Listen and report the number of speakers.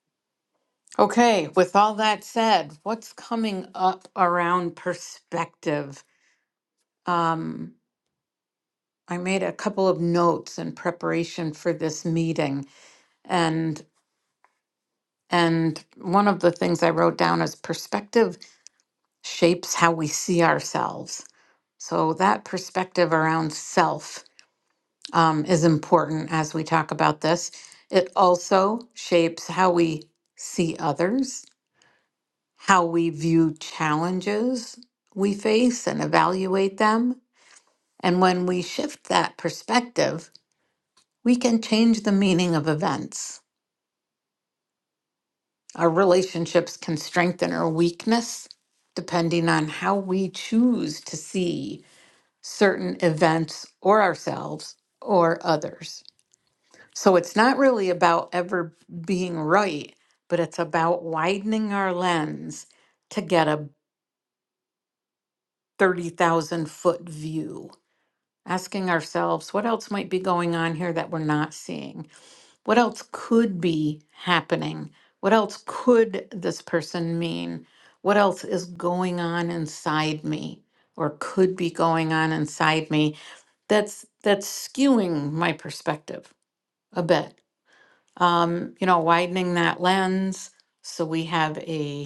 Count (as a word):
one